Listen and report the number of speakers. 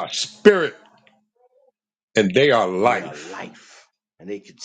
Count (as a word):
two